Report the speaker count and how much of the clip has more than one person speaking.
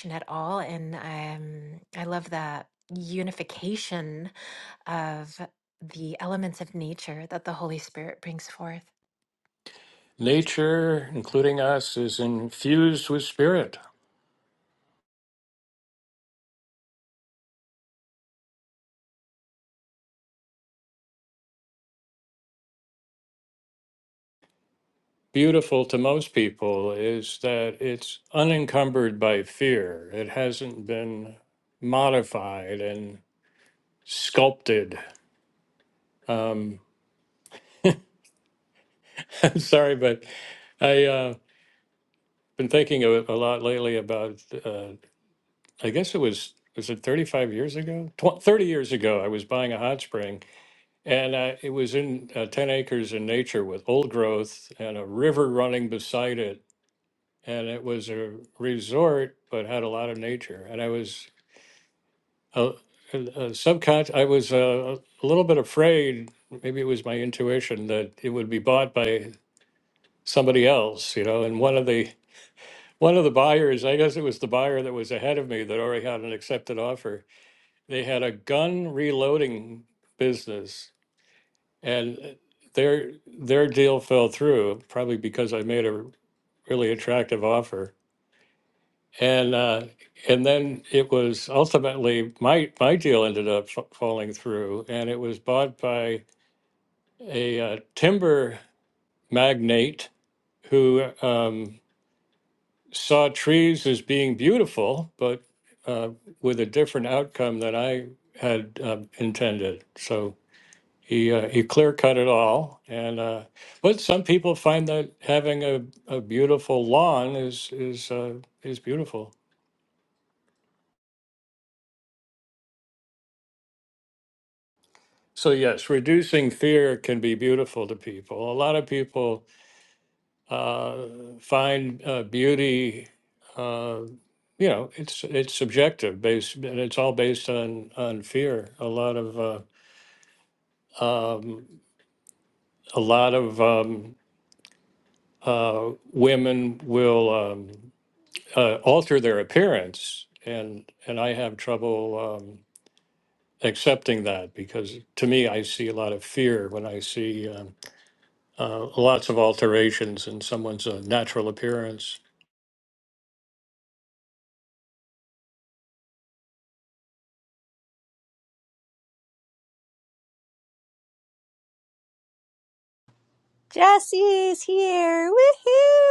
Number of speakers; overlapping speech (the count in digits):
3, no overlap